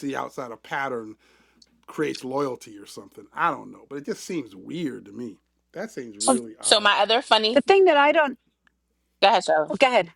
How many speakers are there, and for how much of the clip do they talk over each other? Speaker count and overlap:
3, about 4%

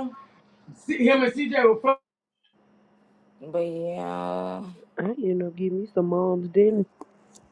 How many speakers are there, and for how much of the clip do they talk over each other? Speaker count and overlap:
3, no overlap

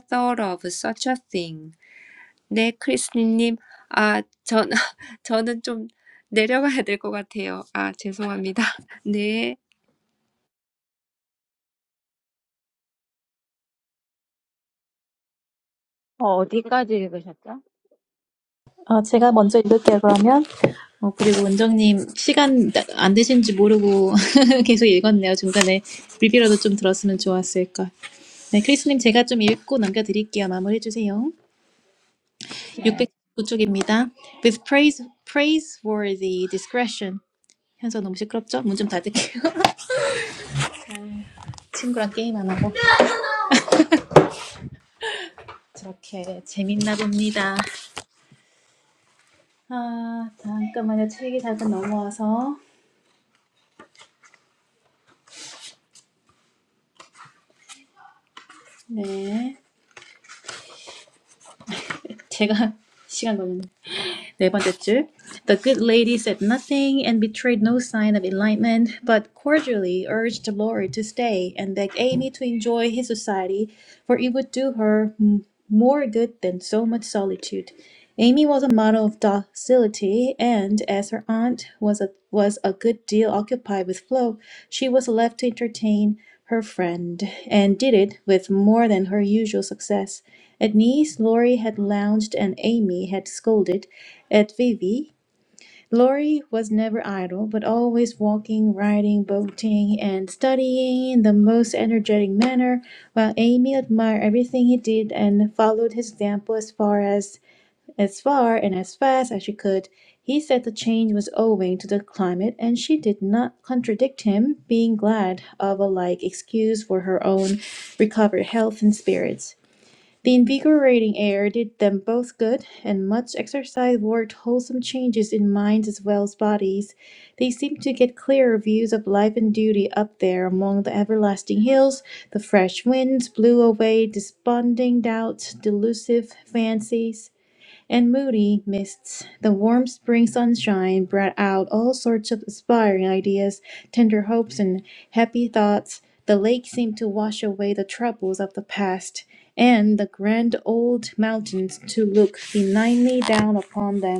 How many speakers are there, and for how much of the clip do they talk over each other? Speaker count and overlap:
3, no overlap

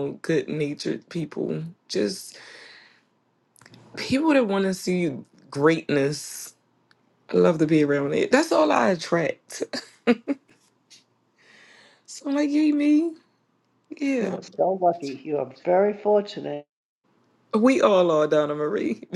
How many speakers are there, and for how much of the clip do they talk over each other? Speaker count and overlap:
2, about 1%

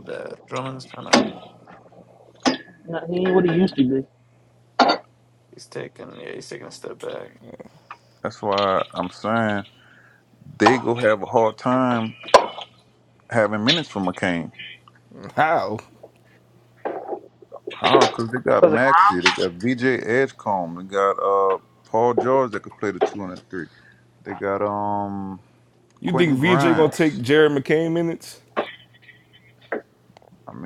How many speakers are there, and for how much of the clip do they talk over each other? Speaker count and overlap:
4, about 4%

